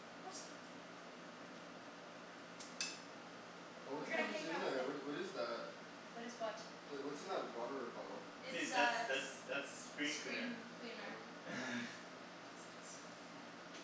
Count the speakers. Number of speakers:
three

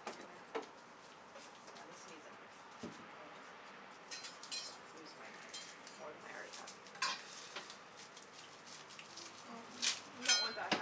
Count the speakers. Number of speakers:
two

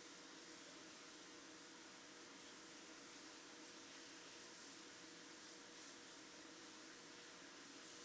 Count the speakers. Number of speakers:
zero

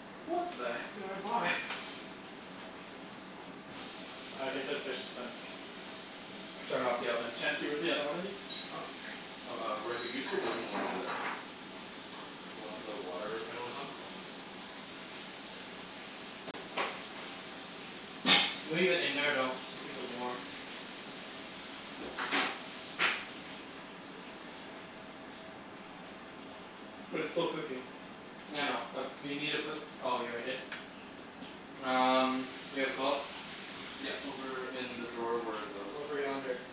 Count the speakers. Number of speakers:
three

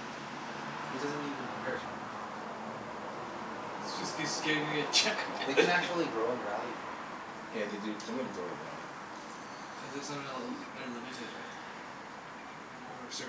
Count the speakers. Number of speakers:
three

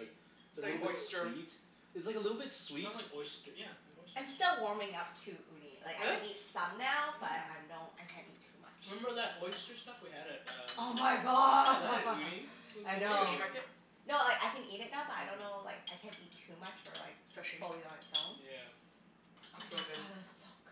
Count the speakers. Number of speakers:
four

